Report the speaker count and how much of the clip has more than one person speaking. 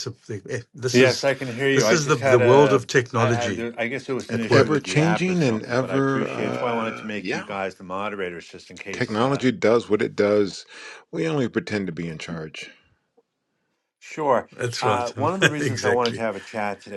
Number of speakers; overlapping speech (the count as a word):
three, about 38%